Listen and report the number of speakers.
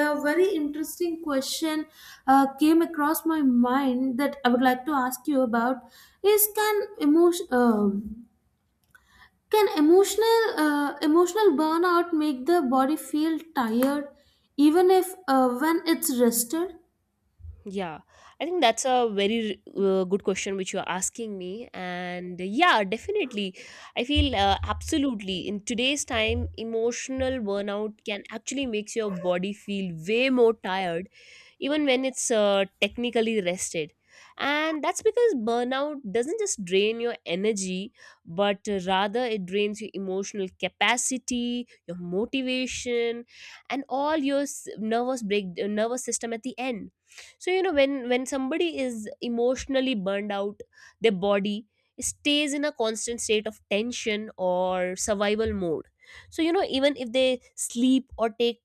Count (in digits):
2